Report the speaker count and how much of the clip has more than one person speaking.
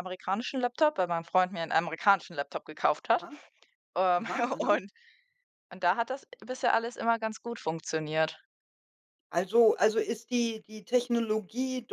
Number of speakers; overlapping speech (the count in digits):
2, about 5%